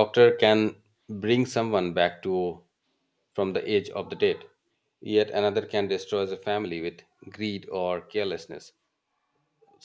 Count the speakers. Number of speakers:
1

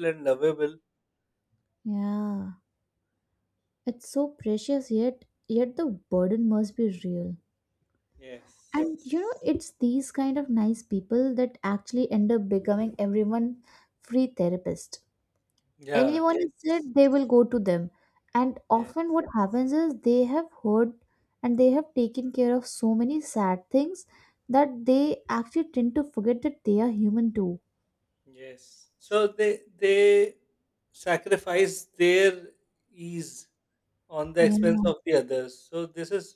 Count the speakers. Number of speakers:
2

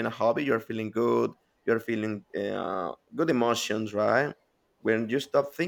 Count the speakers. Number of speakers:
1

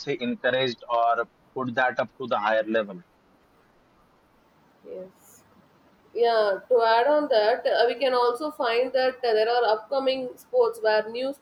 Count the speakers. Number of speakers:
2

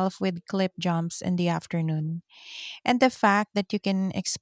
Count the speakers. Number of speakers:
1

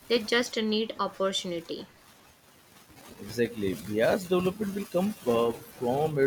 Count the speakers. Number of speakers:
2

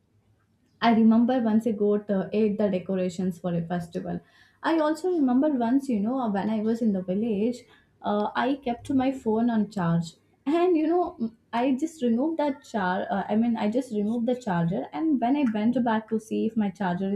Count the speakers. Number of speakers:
1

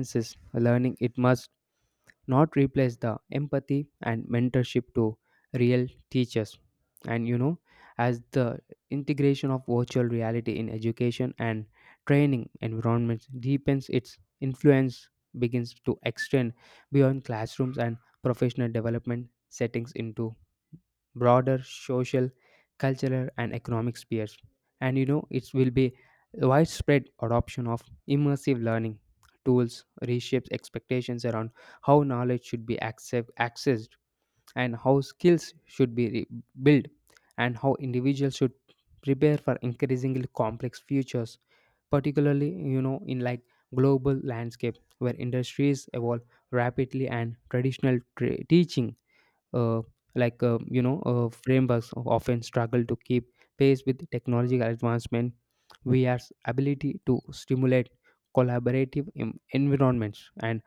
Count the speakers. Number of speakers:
1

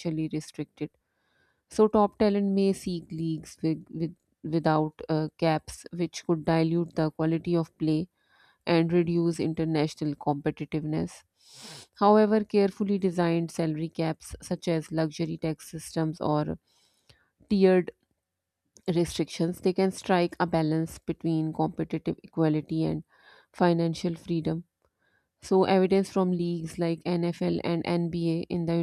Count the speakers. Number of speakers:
1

